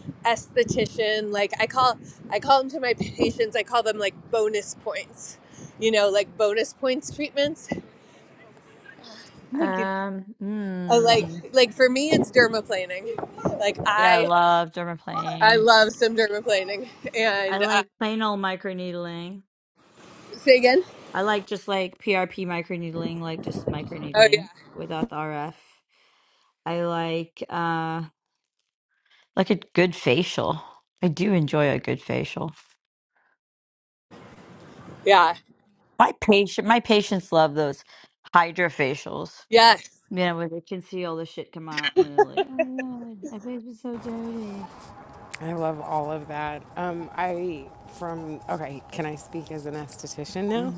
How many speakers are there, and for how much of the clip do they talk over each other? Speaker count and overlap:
three, about 4%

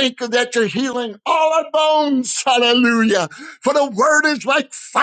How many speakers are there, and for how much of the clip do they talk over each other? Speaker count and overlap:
one, no overlap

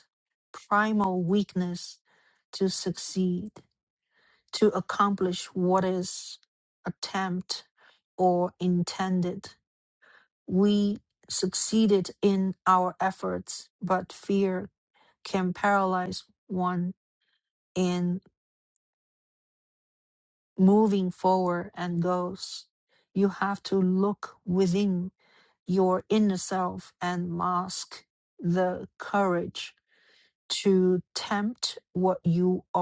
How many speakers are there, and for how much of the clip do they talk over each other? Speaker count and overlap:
one, no overlap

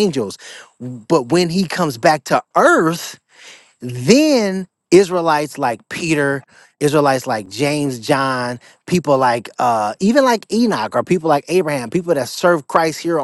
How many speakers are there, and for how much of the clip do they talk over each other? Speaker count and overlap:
one, no overlap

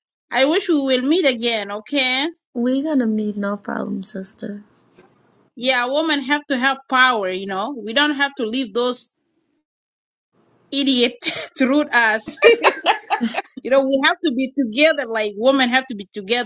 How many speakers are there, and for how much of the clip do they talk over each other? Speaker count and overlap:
two, no overlap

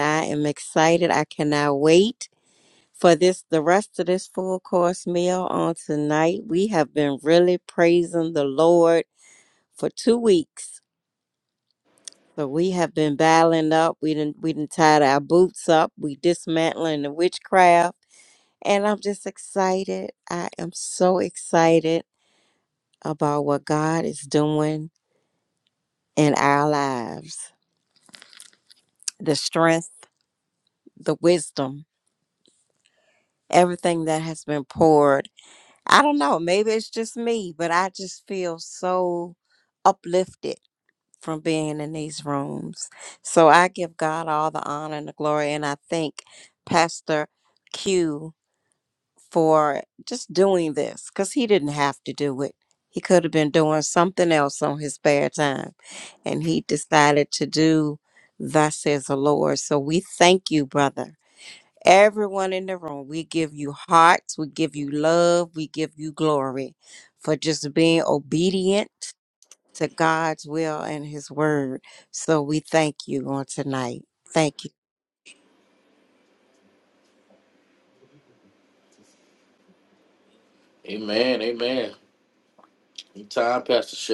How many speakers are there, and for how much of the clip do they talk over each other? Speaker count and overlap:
two, no overlap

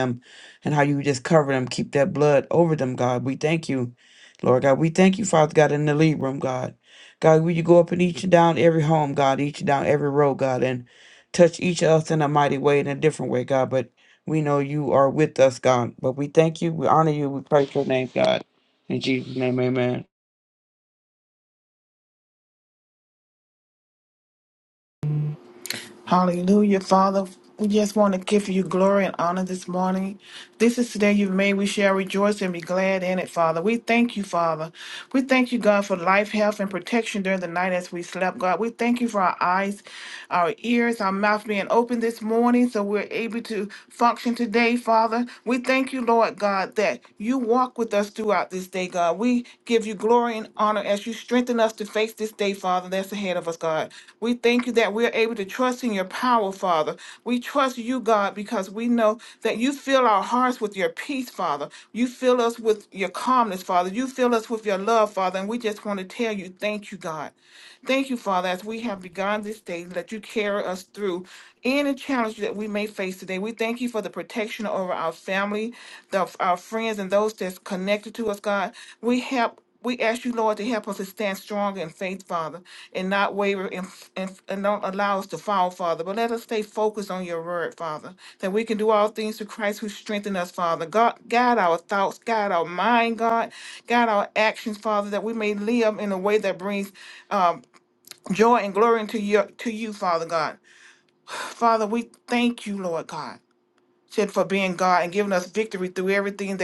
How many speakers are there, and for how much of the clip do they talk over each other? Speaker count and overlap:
two, no overlap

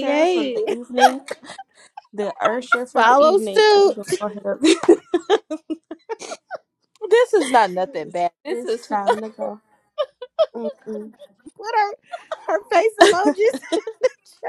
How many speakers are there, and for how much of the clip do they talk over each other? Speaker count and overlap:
three, about 16%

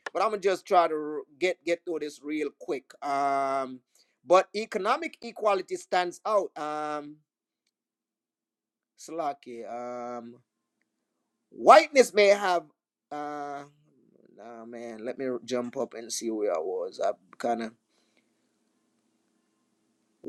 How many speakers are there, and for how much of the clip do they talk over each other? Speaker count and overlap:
one, no overlap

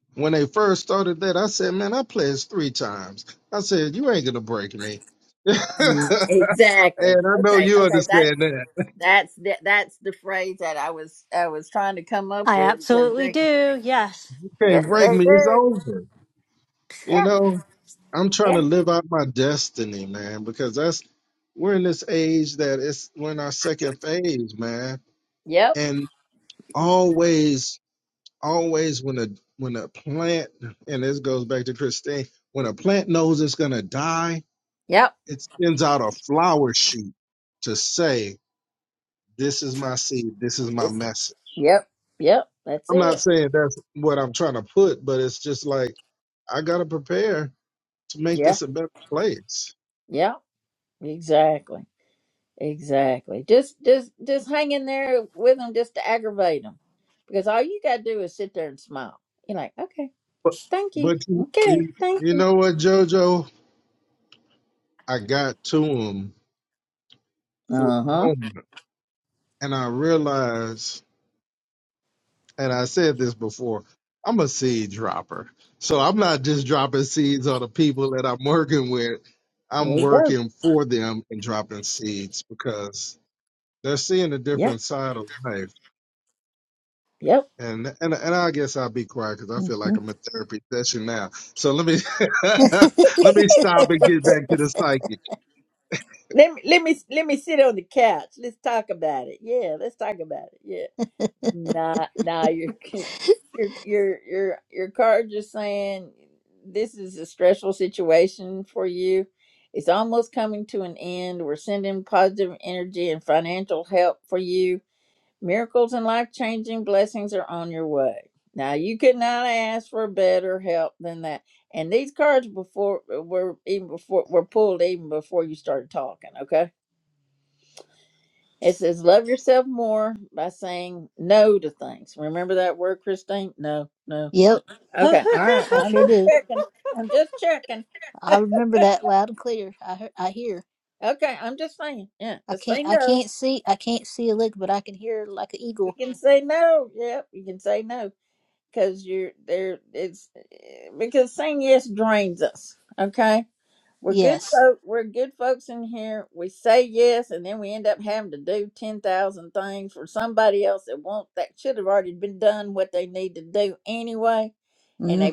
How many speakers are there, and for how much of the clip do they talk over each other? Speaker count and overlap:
four, about 5%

